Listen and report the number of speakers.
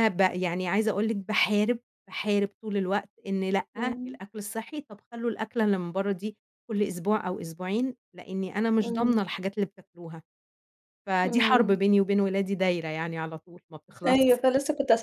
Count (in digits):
2